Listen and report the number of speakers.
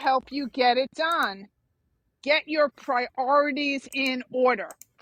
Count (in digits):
1